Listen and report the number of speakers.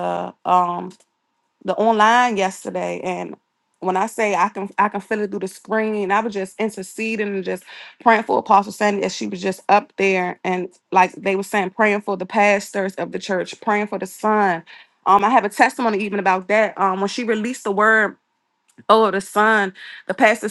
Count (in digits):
1